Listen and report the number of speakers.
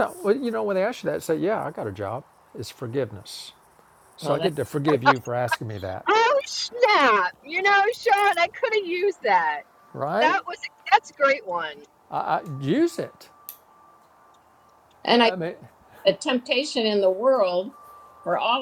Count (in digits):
3